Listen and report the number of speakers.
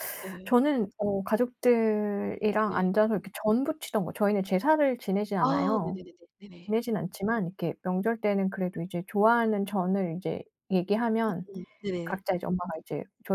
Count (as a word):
two